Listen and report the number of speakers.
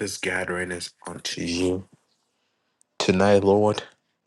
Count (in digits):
1